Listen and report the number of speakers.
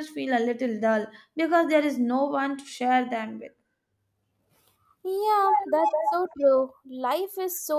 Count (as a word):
two